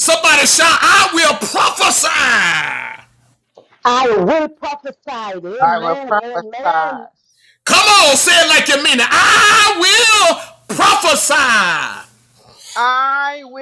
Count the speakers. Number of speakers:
3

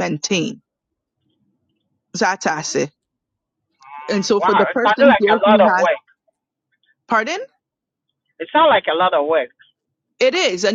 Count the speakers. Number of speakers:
2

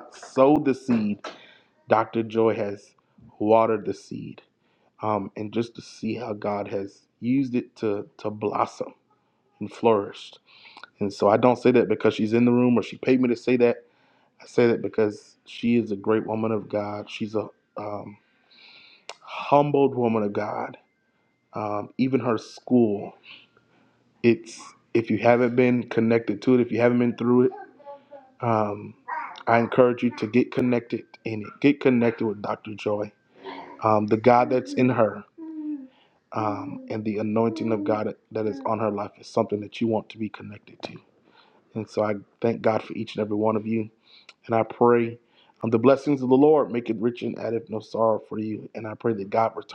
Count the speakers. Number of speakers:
1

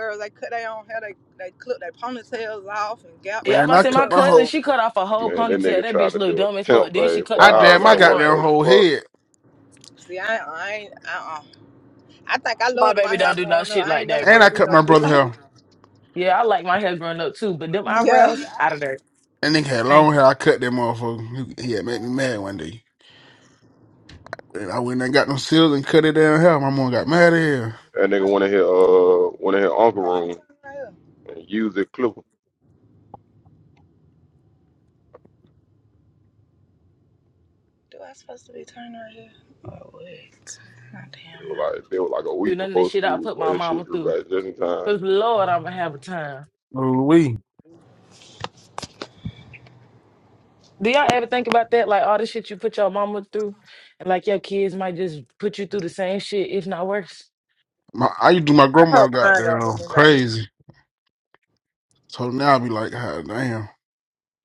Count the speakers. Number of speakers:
4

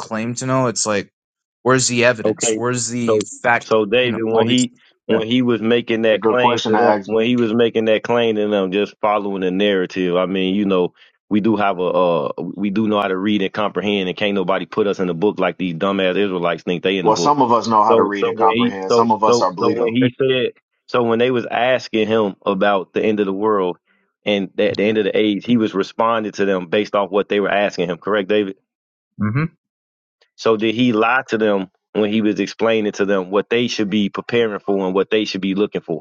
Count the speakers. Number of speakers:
3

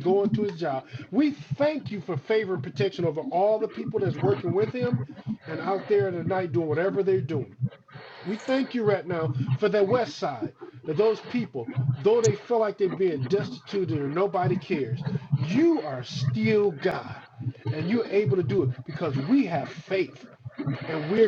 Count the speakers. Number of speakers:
1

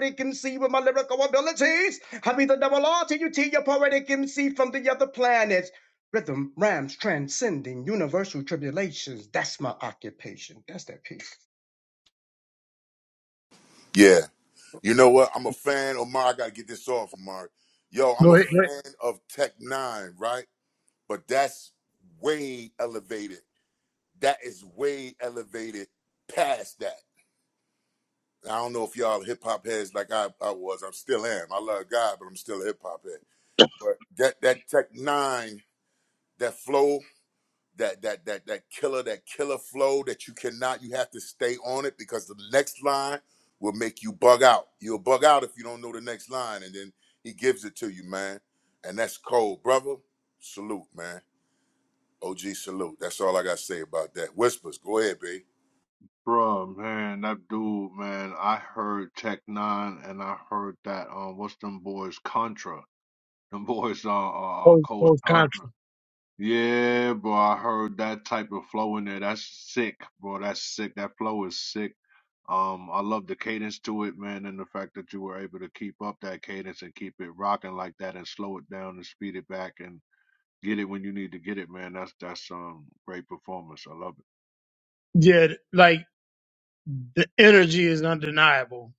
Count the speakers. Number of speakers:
4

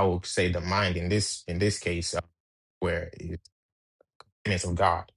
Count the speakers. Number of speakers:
1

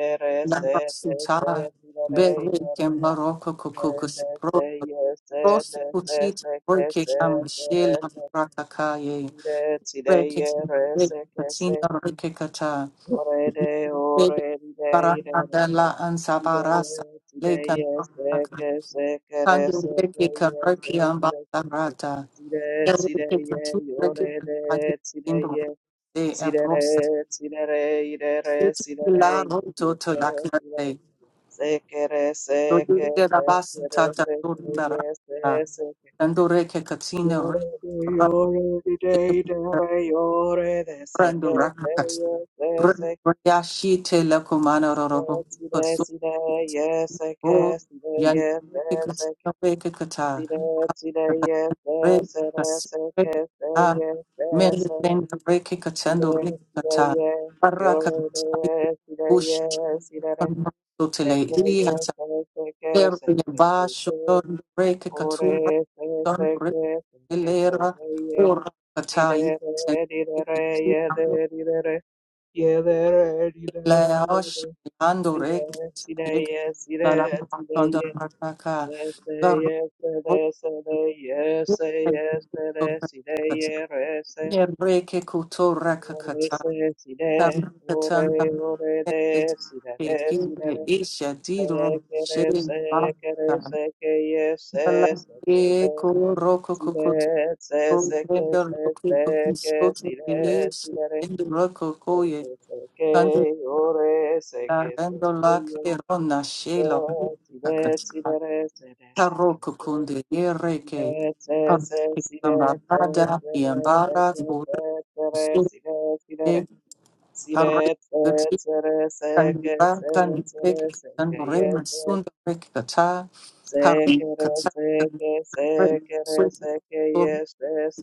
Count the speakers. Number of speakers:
2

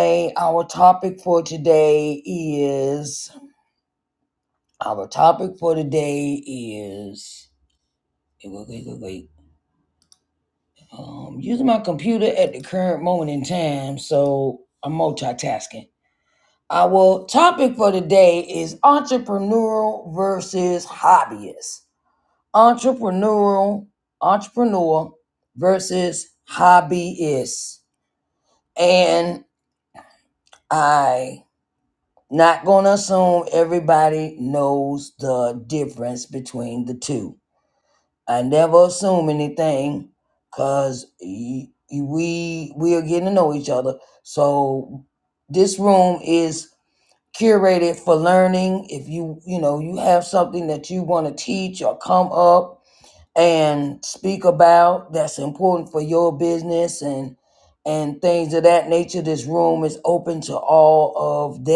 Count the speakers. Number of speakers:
1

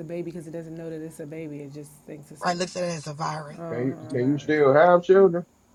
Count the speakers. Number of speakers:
3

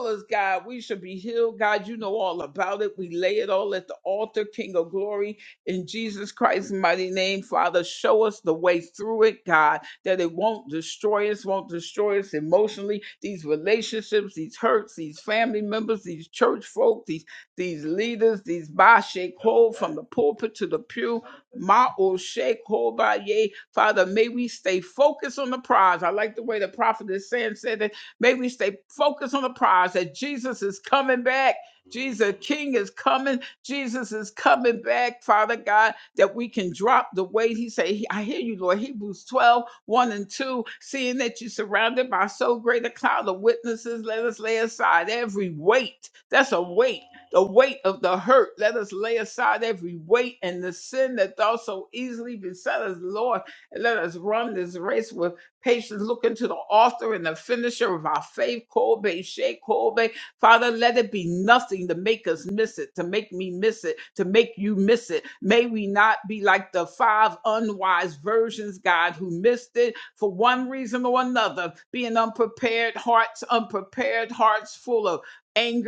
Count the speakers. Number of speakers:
1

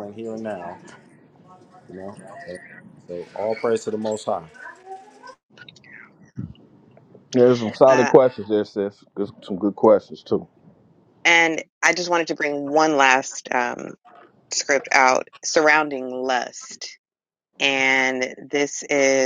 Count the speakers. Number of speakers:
3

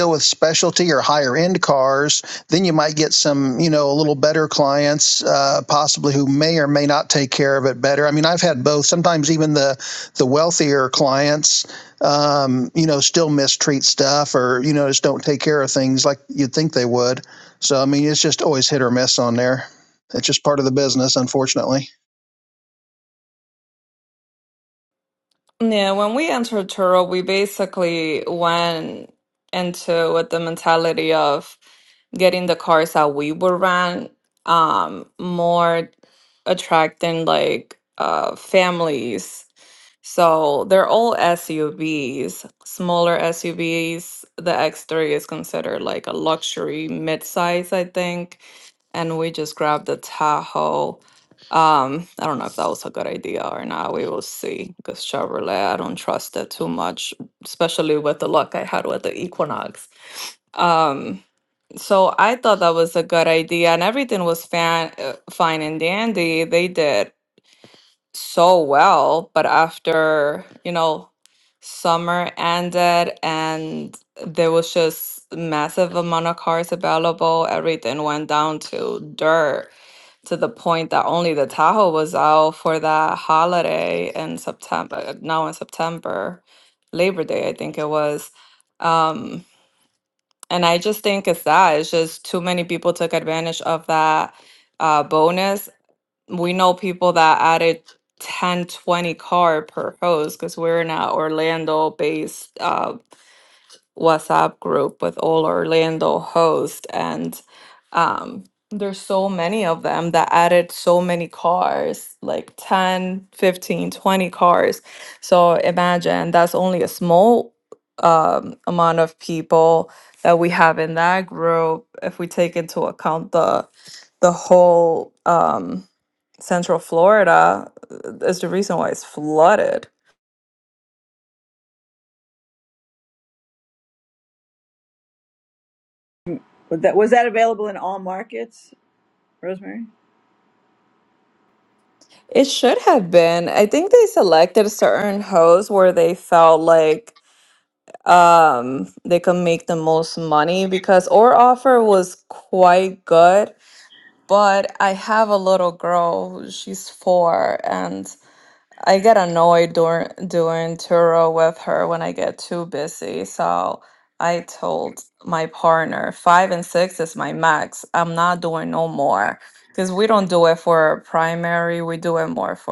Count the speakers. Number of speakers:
3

